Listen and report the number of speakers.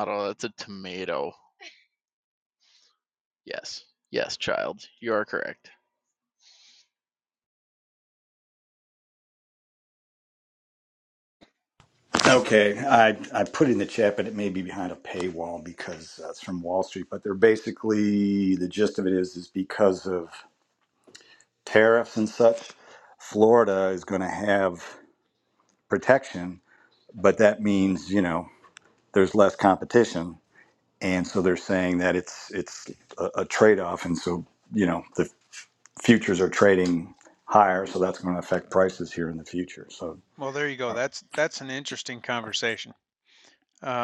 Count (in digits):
3